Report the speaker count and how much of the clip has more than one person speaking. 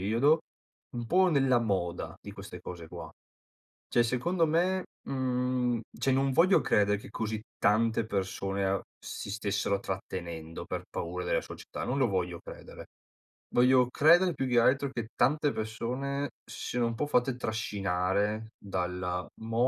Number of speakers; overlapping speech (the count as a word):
one, no overlap